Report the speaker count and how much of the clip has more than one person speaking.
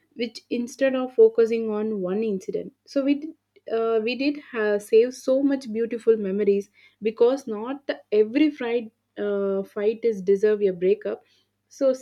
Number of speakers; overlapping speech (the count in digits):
1, no overlap